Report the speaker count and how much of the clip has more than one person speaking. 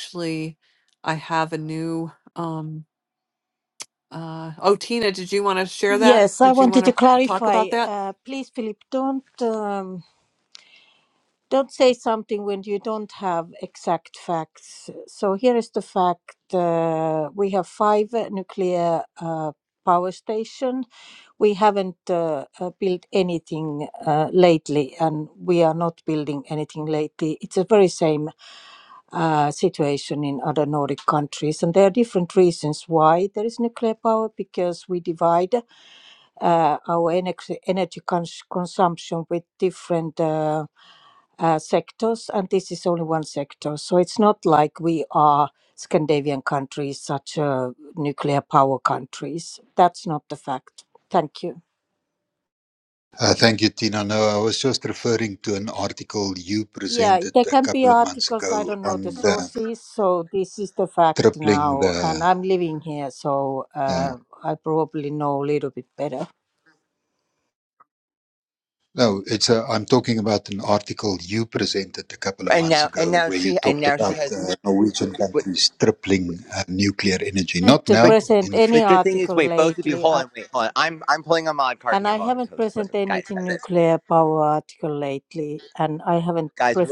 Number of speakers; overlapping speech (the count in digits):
4, about 15%